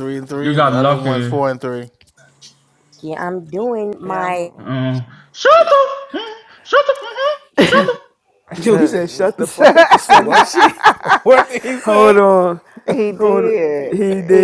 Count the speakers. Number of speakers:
five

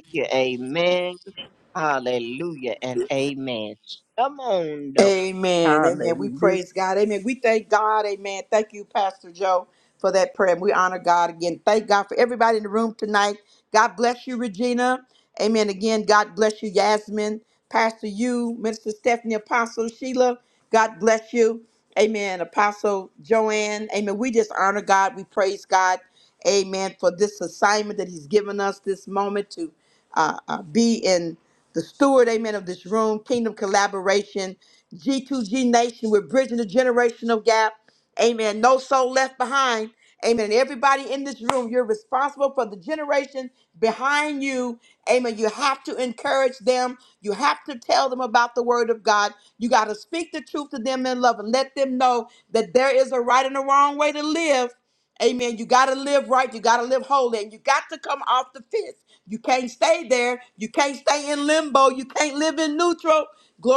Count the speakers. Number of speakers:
two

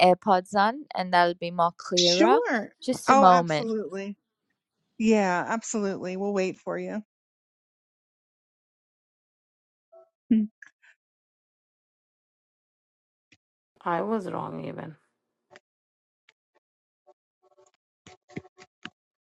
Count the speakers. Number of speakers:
three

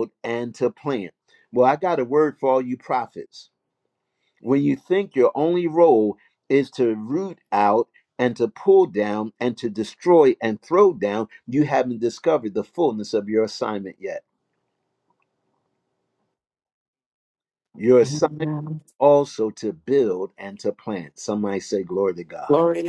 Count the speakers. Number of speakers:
two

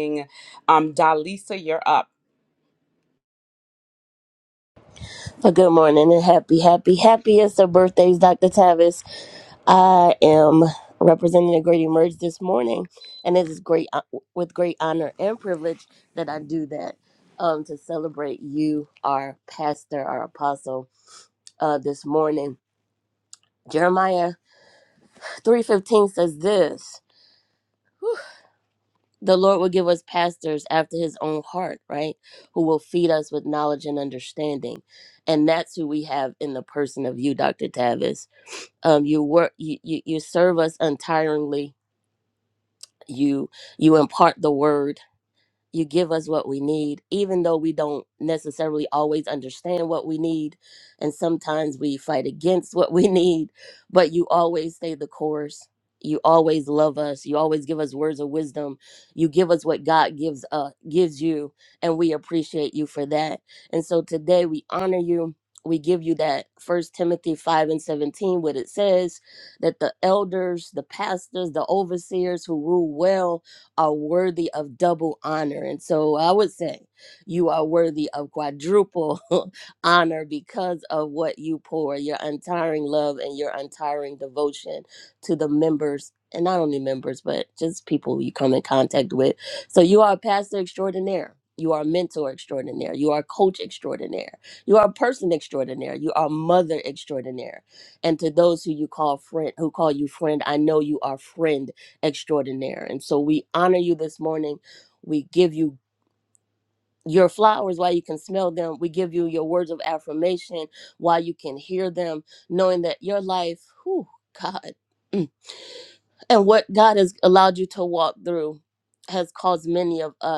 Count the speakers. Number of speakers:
two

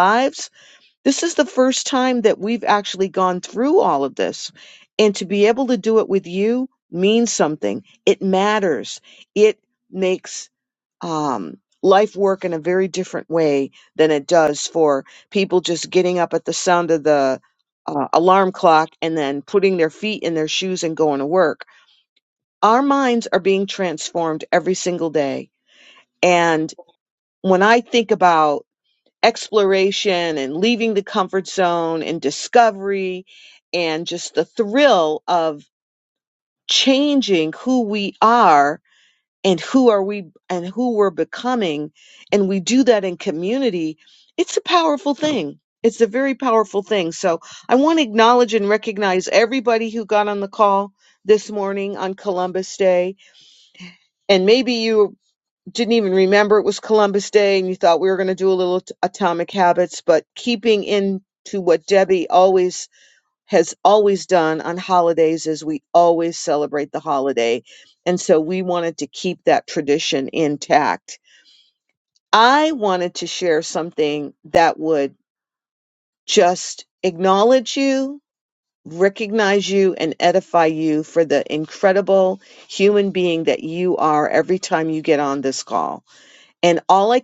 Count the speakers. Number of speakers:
one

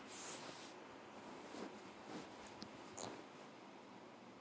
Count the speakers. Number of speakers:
zero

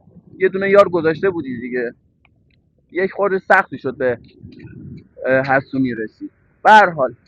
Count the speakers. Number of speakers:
one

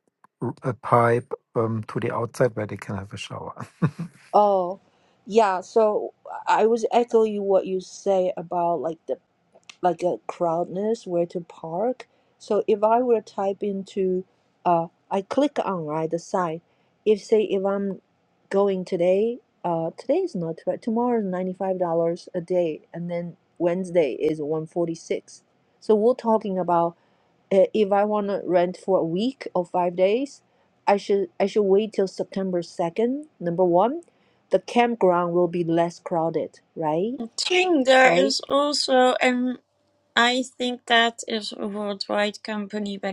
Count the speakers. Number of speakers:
three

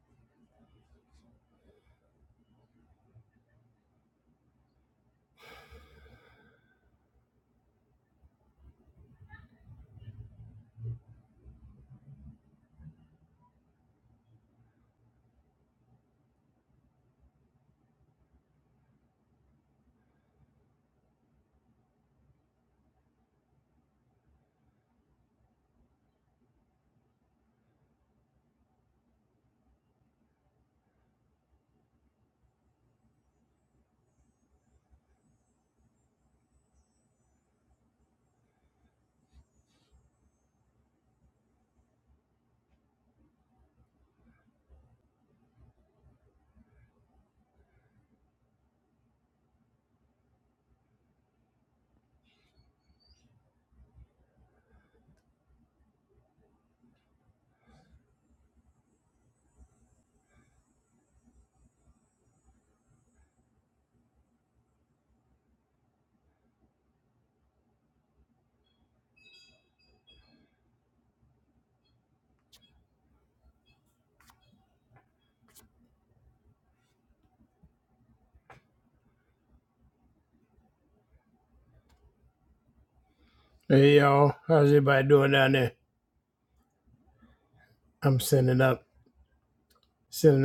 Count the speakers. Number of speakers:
one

